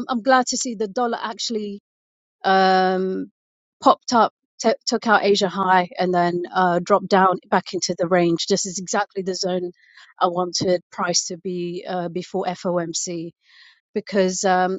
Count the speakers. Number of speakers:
one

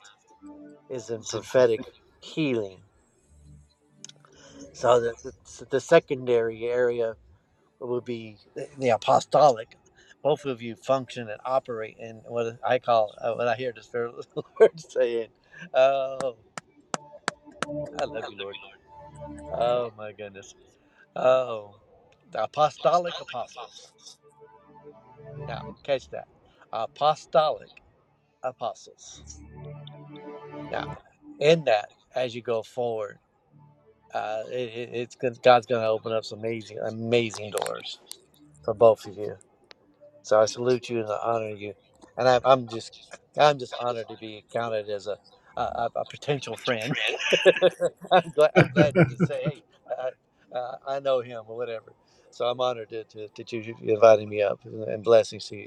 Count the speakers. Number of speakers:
one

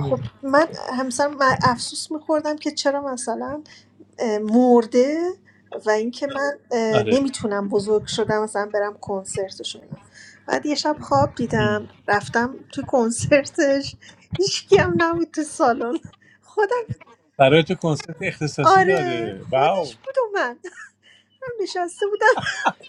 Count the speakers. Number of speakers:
two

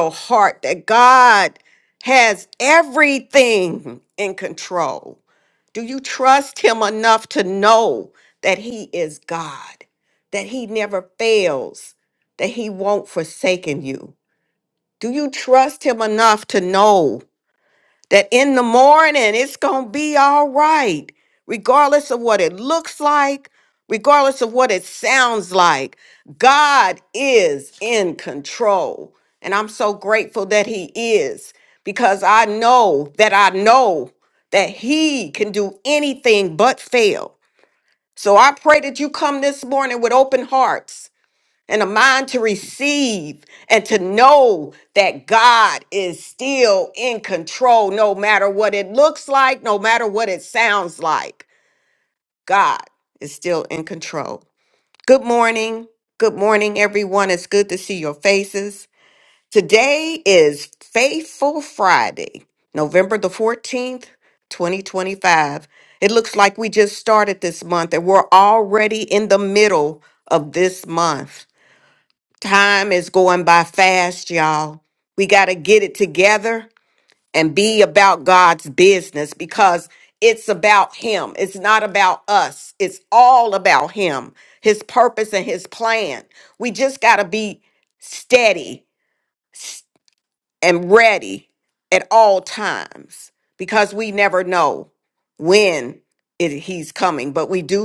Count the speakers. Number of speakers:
one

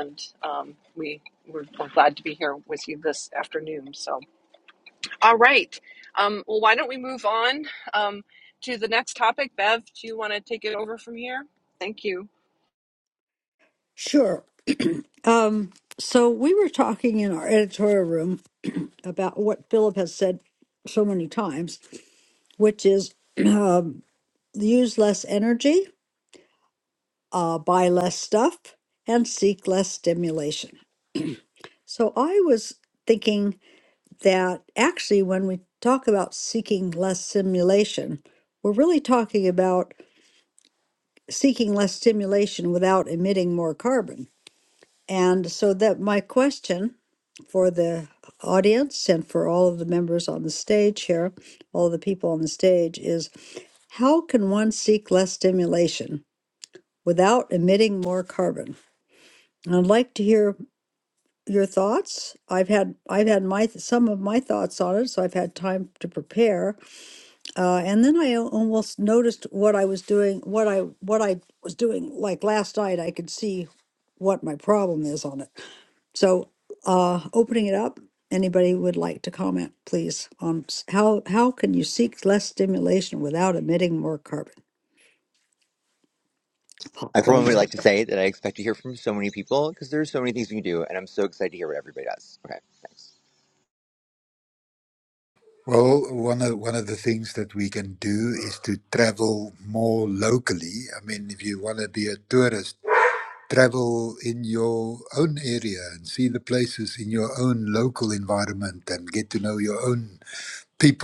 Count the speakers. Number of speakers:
four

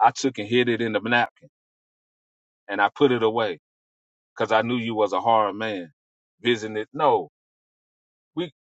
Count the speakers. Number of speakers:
one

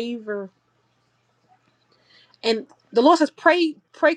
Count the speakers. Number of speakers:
one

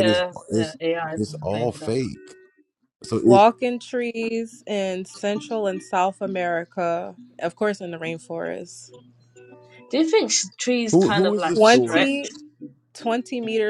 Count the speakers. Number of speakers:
three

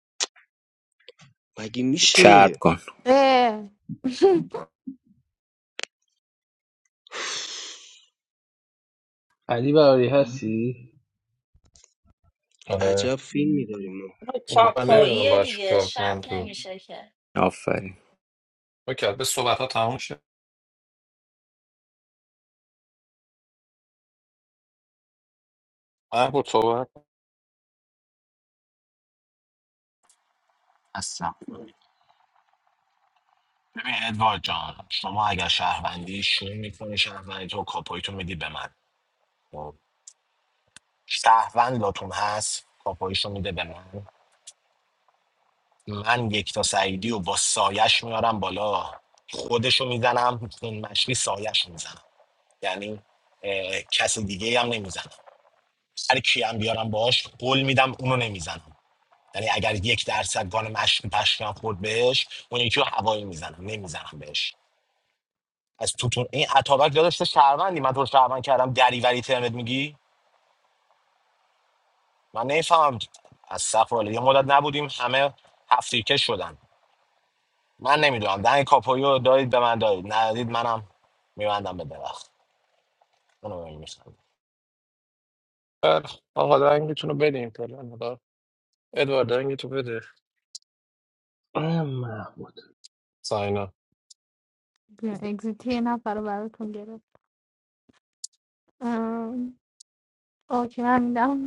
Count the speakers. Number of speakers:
seven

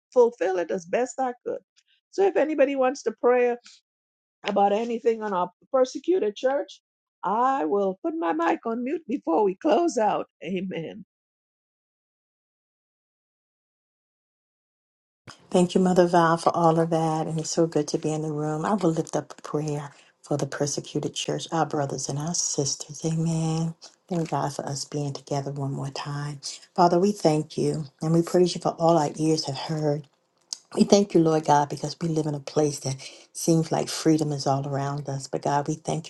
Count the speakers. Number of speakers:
two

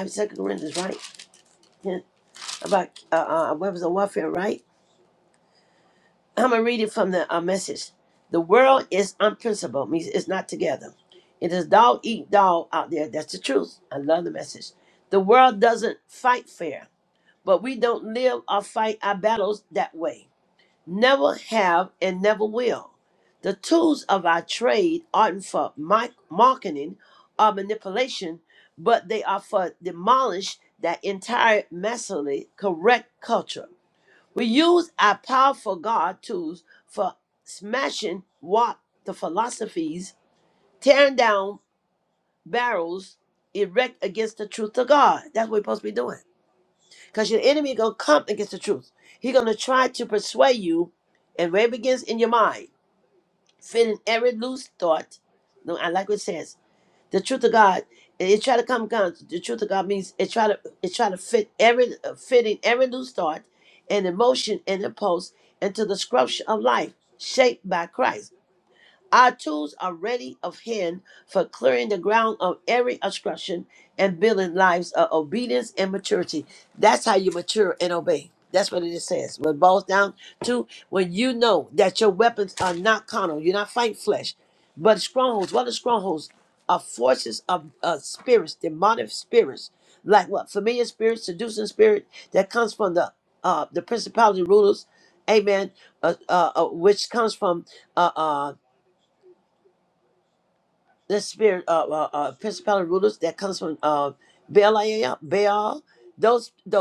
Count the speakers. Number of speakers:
one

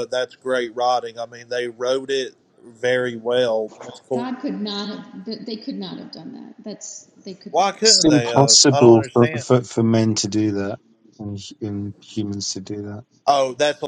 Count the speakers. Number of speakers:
three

